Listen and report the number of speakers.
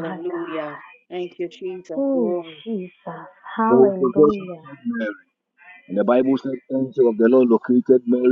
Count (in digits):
3